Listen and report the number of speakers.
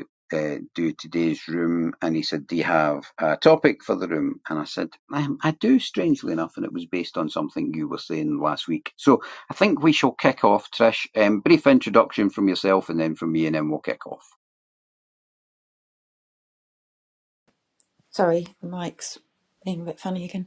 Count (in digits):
2